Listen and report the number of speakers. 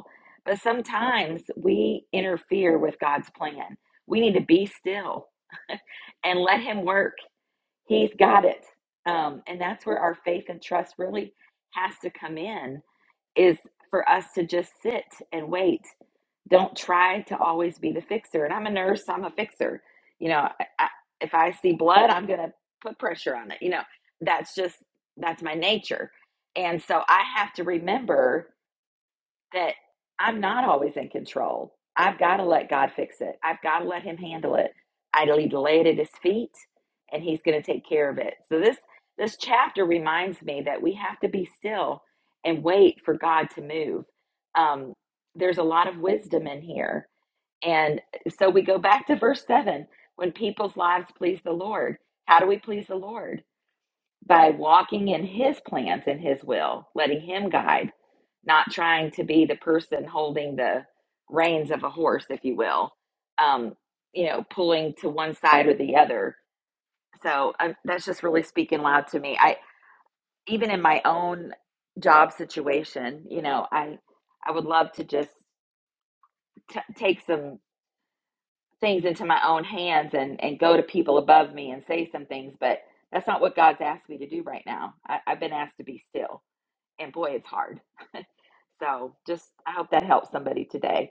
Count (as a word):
one